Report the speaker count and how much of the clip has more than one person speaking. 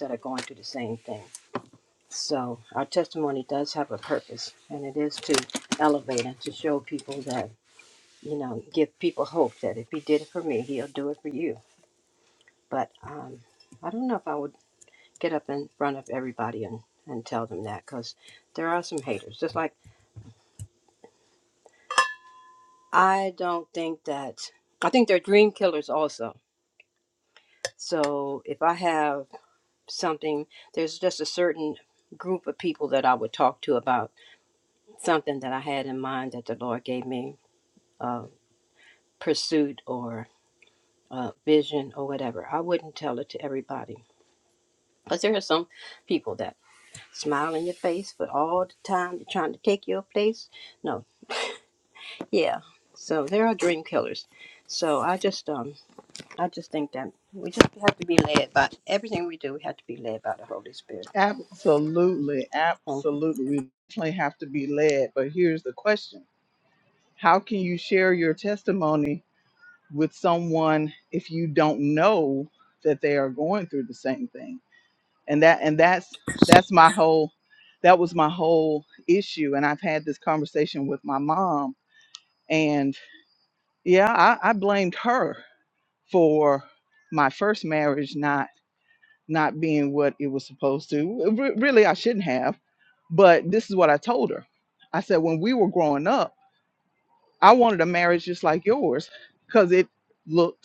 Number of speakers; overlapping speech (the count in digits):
2, under 1%